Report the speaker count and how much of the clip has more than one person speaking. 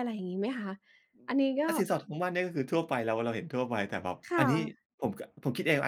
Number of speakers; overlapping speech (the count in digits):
2, about 6%